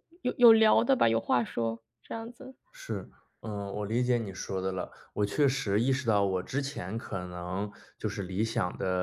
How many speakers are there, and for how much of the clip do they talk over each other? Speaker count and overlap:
2, no overlap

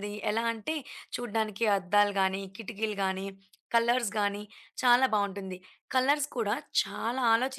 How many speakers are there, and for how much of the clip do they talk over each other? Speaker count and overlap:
1, no overlap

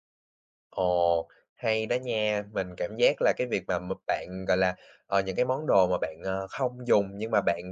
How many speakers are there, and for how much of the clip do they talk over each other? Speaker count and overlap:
1, no overlap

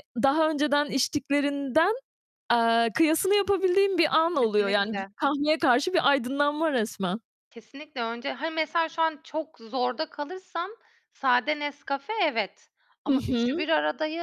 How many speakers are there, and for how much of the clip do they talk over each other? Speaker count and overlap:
2, about 9%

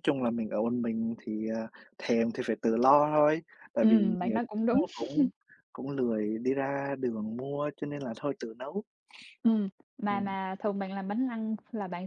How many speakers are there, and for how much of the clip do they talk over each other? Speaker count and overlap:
2, about 8%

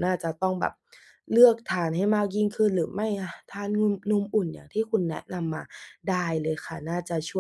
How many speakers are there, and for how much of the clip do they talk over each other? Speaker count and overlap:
1, no overlap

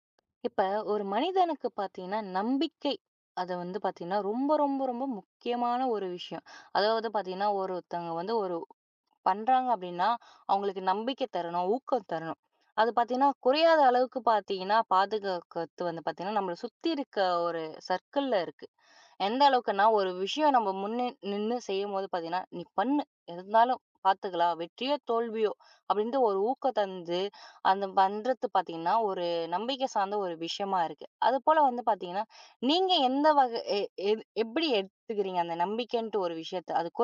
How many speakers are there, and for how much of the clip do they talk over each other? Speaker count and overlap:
1, no overlap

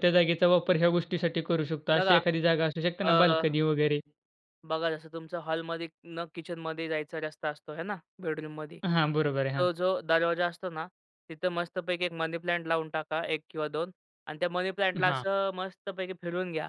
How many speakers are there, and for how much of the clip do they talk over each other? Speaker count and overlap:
2, about 5%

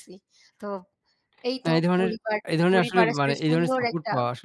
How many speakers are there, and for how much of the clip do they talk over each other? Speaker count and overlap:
2, about 50%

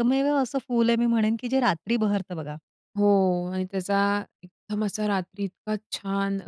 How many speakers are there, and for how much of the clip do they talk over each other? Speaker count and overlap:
2, no overlap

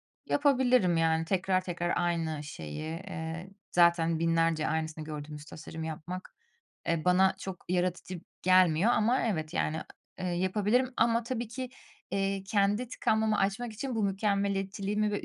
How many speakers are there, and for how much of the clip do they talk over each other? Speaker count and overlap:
1, no overlap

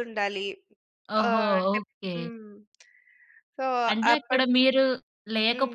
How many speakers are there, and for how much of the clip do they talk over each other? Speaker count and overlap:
2, about 25%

